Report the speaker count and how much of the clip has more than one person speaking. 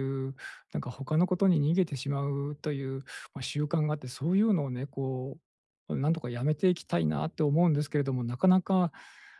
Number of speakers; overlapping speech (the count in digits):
1, no overlap